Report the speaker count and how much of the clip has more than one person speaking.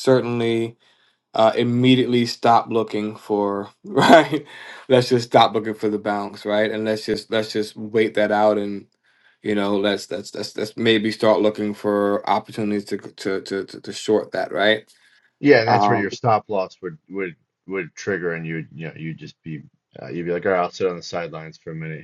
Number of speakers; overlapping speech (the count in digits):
2, about 2%